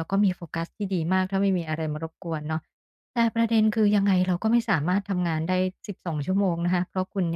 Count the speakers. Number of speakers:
one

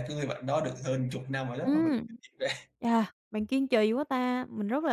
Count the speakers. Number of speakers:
two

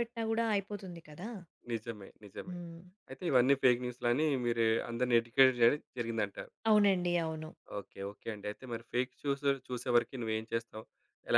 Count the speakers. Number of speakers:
two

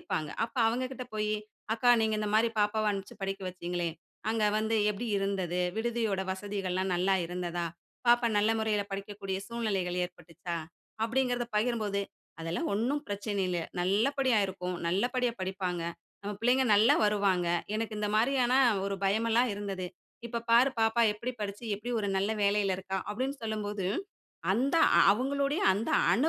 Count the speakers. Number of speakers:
one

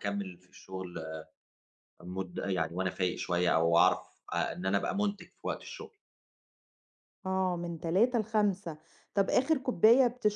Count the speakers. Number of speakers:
two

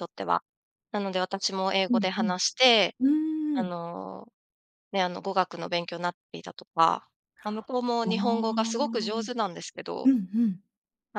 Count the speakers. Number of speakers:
two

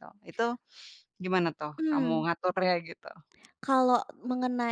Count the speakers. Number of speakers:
two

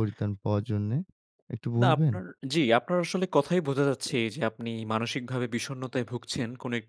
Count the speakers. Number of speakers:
two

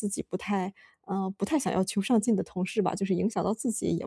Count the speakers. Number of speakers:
one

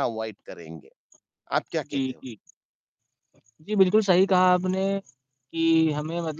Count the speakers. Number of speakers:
two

